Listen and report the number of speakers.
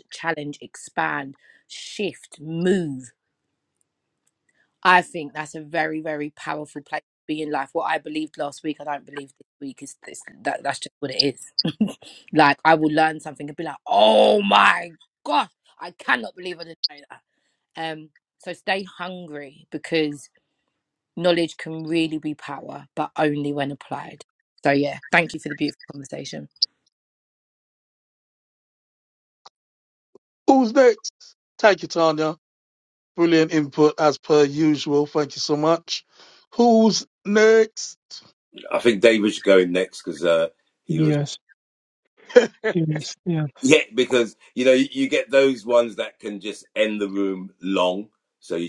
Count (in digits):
4